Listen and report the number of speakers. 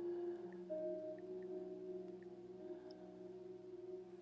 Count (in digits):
0